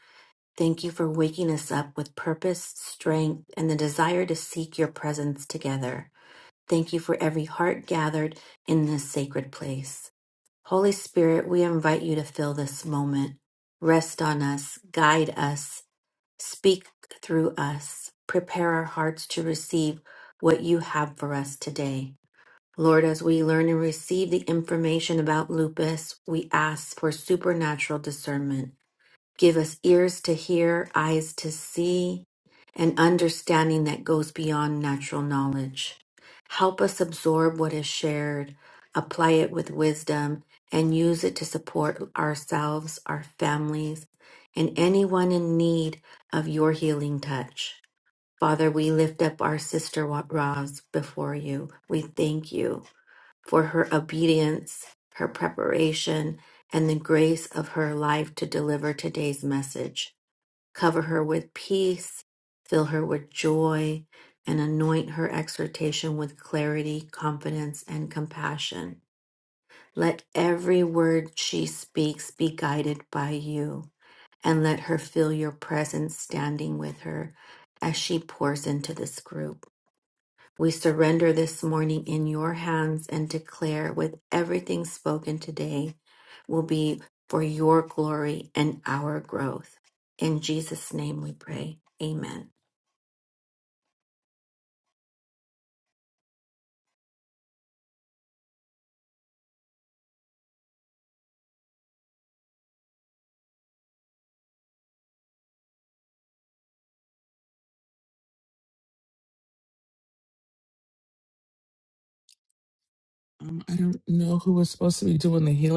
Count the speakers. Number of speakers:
2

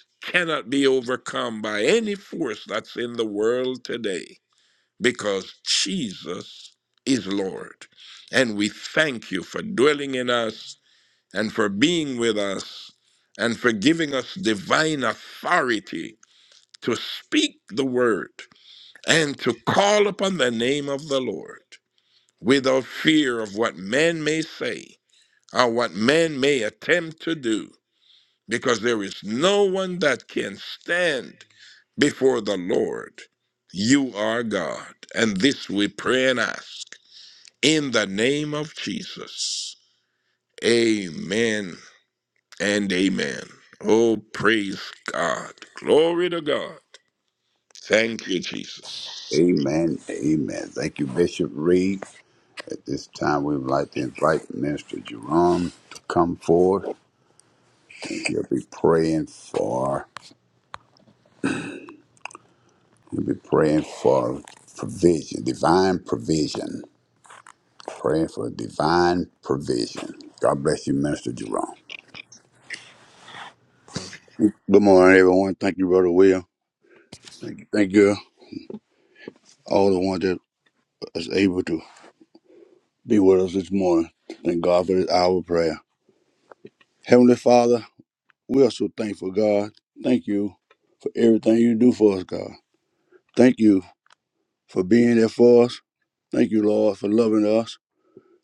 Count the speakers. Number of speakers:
3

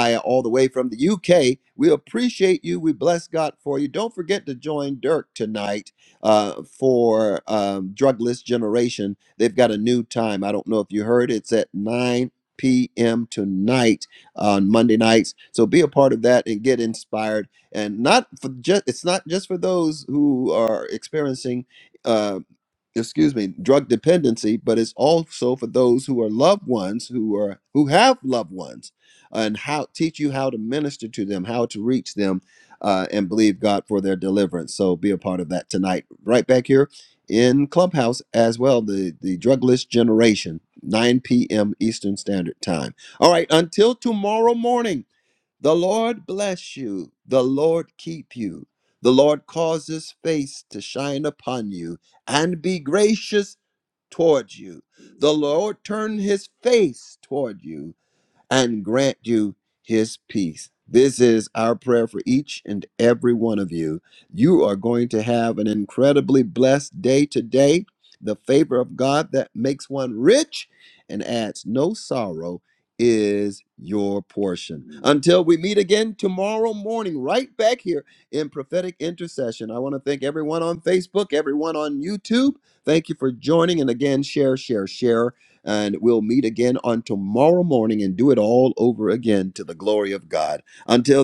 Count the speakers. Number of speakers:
1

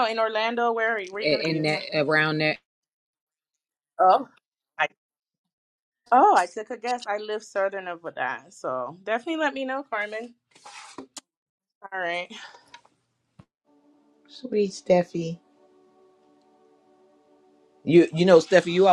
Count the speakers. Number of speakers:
3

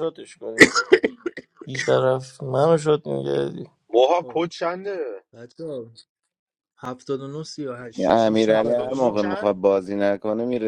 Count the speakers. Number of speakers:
4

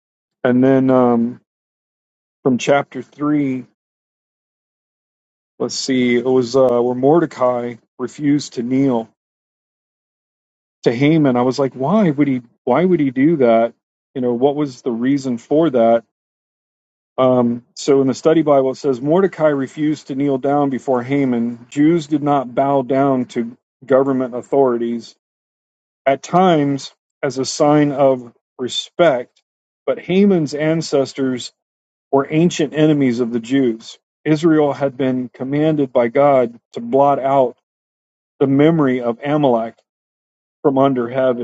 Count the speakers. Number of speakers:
1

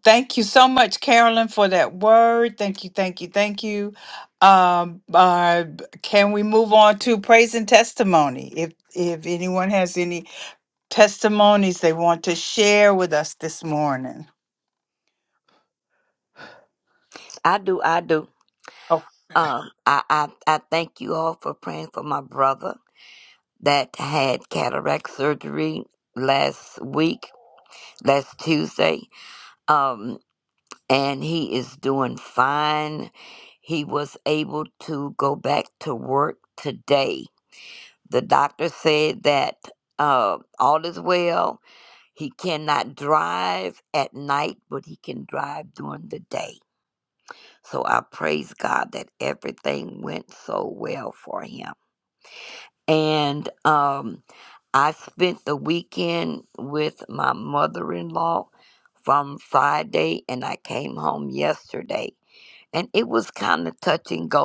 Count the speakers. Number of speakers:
2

